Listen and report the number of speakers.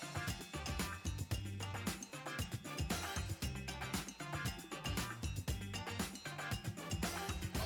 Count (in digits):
0